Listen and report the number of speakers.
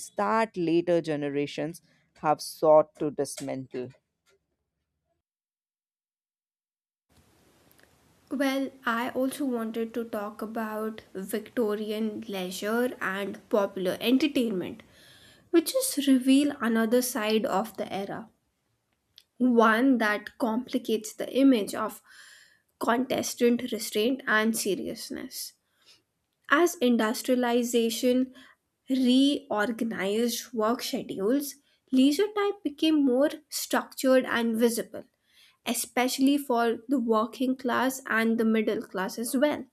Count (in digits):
2